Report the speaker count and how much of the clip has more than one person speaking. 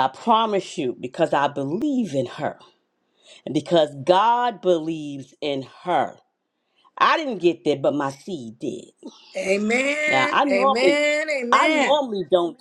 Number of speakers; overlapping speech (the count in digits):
2, about 11%